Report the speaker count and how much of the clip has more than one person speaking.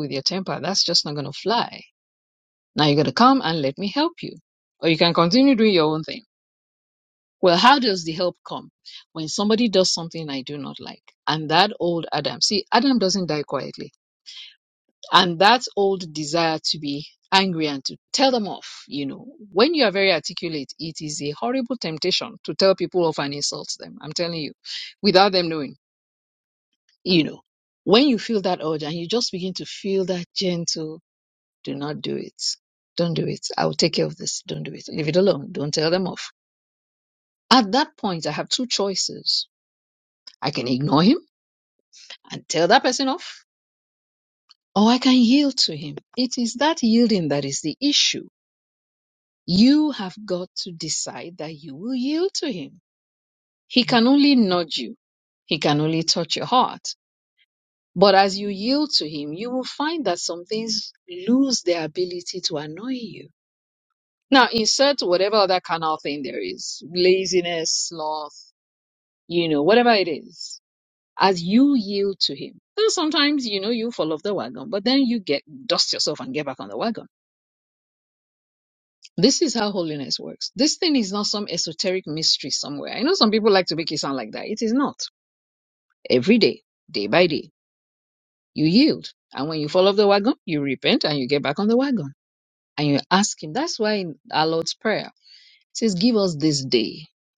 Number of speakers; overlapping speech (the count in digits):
1, no overlap